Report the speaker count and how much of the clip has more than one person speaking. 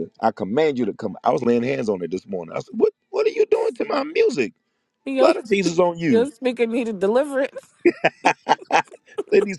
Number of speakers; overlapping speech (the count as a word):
two, about 3%